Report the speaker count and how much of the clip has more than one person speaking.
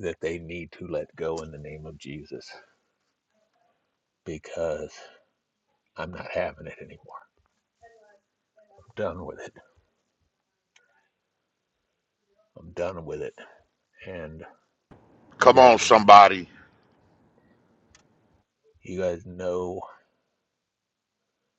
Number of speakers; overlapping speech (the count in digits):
2, about 2%